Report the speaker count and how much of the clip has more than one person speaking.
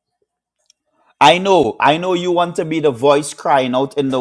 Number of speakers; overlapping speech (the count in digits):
1, no overlap